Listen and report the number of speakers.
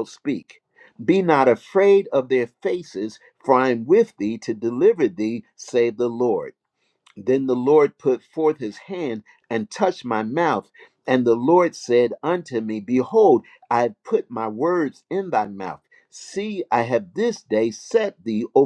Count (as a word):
one